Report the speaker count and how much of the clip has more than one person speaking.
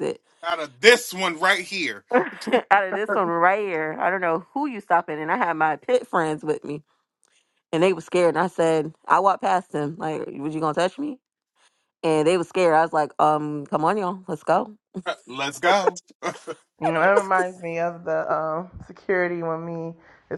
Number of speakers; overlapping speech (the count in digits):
3, about 1%